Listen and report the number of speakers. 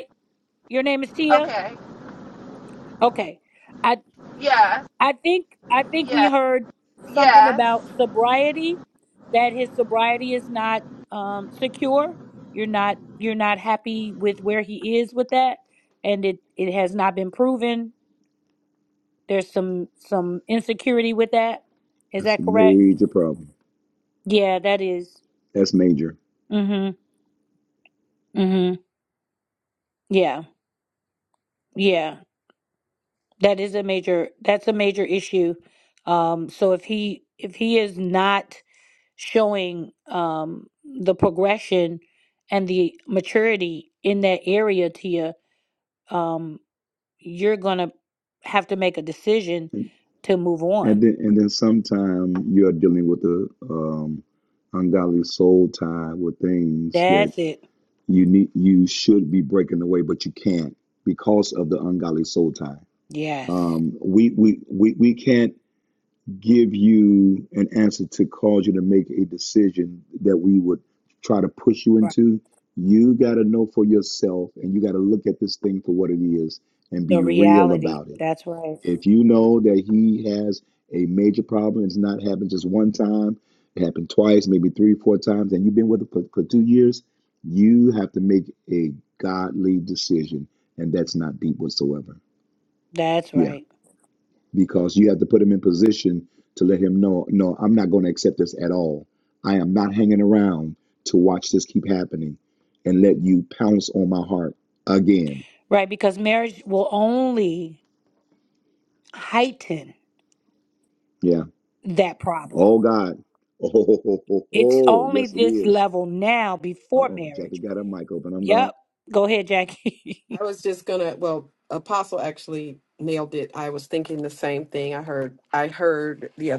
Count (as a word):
four